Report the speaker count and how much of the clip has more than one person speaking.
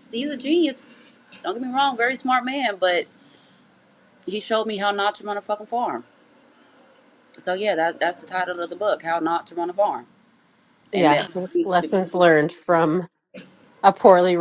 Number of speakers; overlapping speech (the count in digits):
2, about 2%